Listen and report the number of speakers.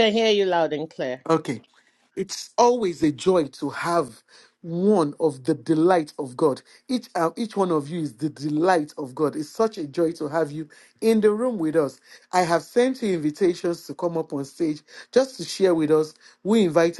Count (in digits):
2